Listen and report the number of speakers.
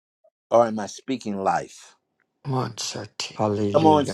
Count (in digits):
2